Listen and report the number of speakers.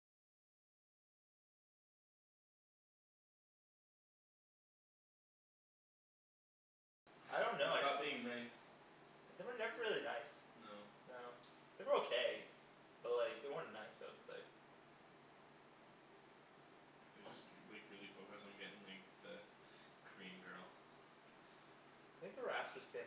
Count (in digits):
2